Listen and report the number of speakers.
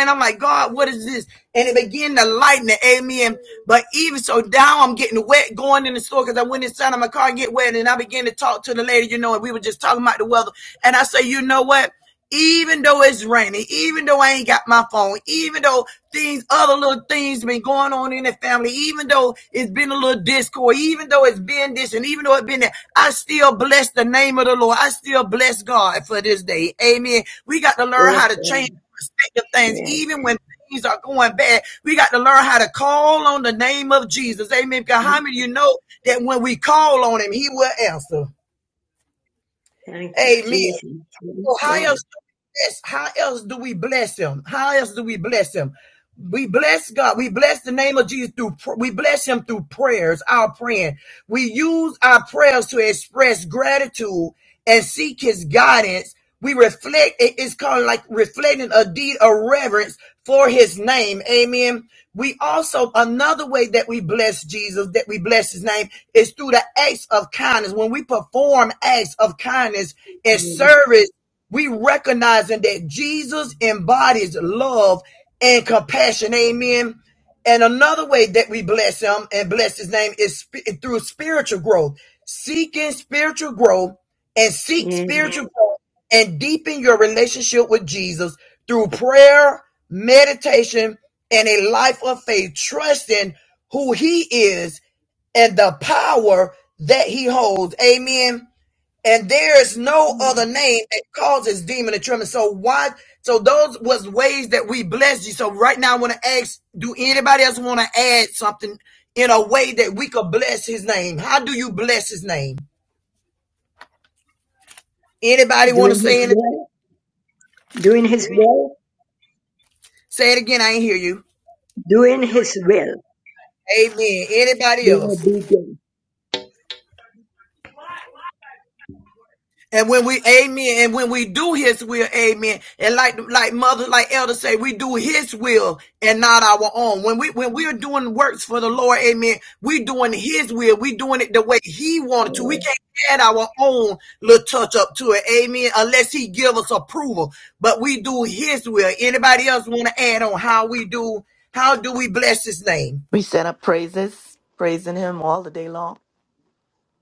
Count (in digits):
3